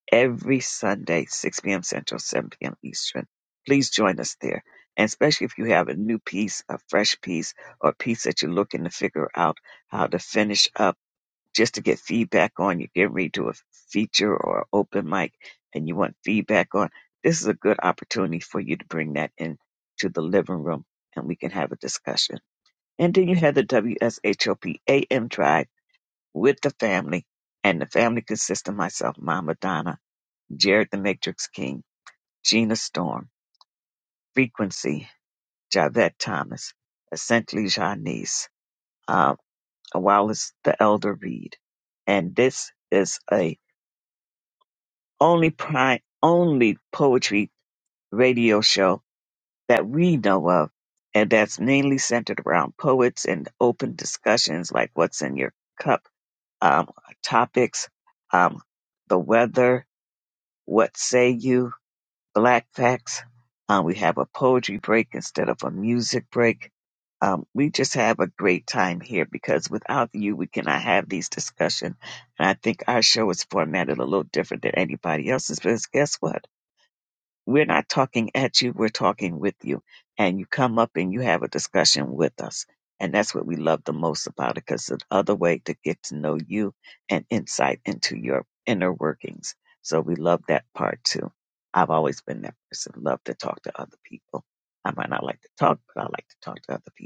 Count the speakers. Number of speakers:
1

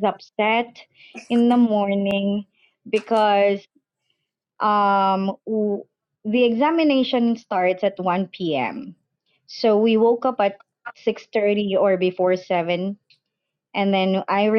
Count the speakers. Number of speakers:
1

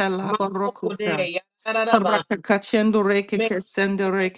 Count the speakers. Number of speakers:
2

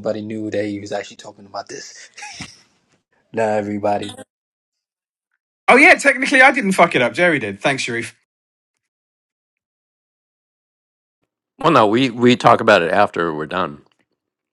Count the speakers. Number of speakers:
3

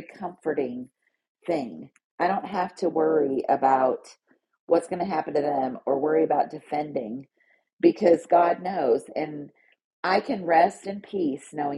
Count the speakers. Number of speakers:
1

